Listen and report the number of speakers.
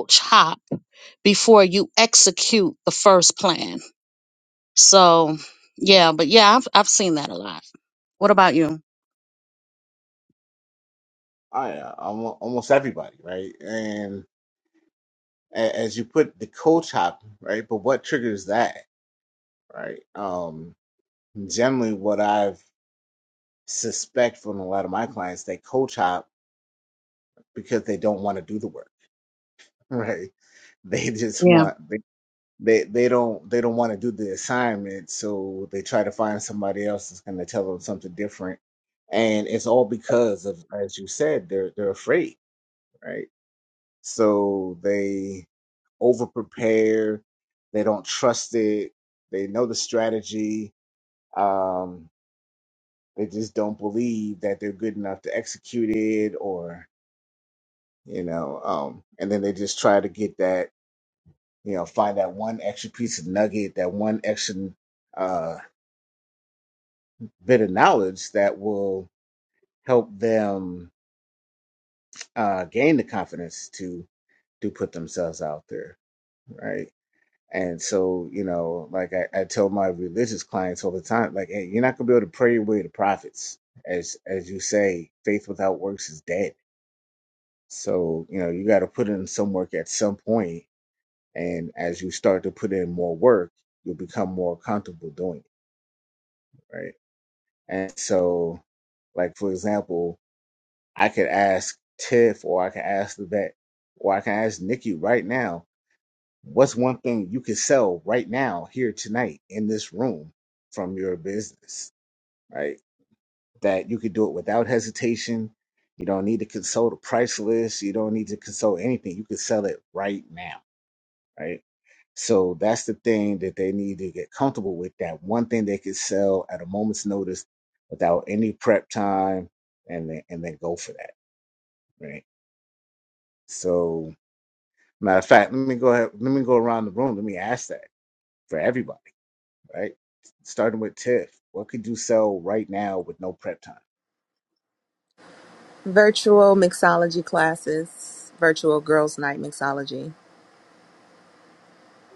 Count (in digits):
3